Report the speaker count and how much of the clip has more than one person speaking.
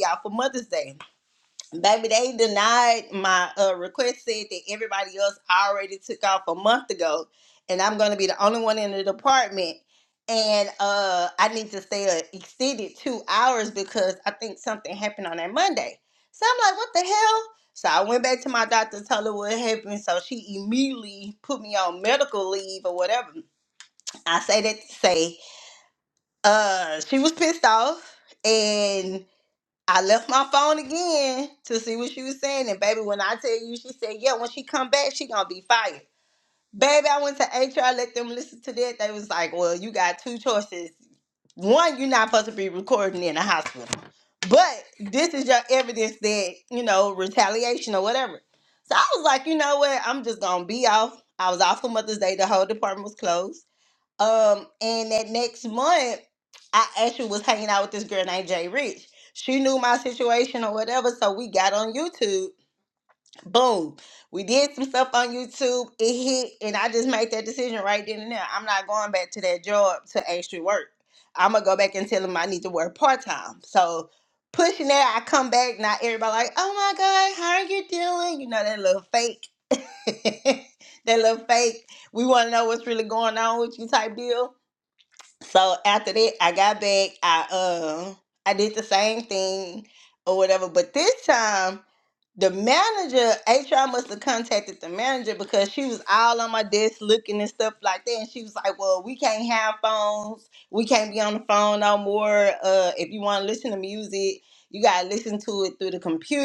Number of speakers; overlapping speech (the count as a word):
one, no overlap